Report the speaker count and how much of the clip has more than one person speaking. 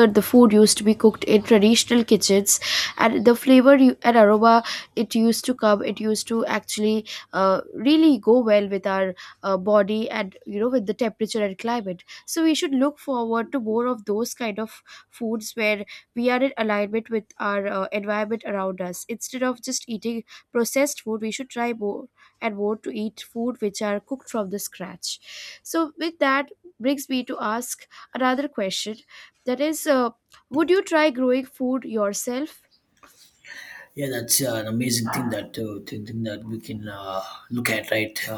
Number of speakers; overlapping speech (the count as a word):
two, no overlap